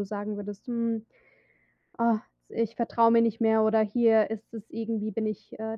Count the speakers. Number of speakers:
one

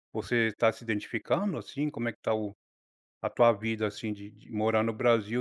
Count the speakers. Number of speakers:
one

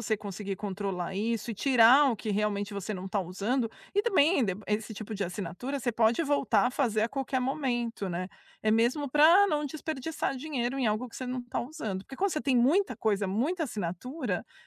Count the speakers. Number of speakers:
one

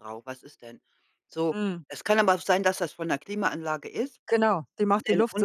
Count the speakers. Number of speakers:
two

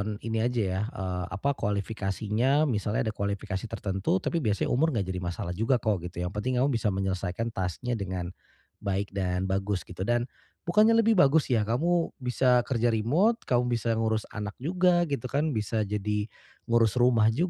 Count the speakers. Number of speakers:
one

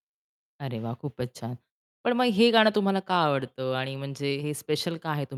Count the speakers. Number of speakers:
one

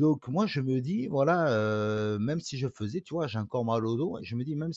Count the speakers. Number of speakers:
one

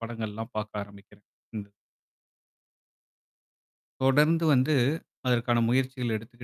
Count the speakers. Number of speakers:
one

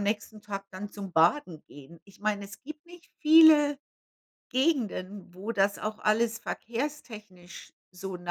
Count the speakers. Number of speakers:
one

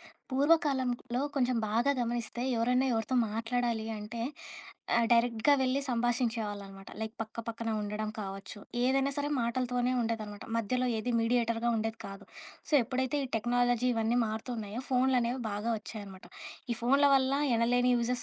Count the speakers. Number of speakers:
one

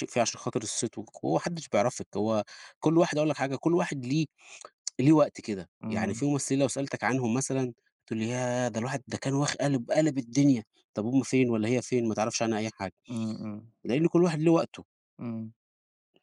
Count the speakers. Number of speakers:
two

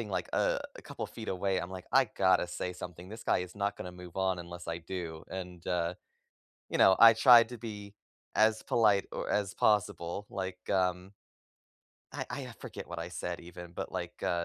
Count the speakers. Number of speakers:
one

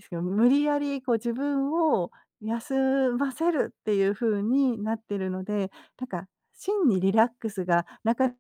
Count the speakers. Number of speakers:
one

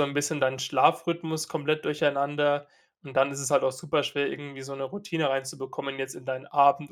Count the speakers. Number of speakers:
one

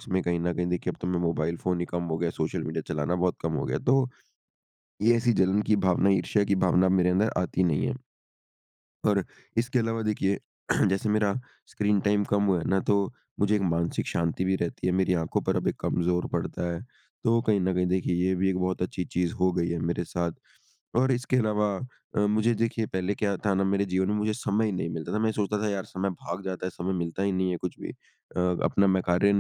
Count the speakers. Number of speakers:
one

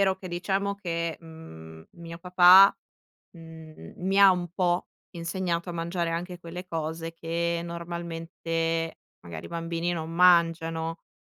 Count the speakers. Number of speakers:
one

